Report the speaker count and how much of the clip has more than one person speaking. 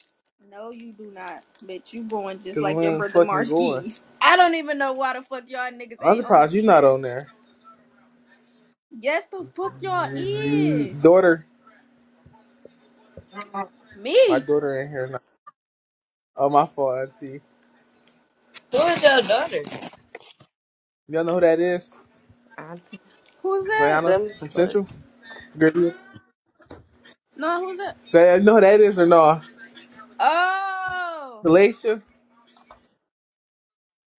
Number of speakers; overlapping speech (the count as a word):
three, about 14%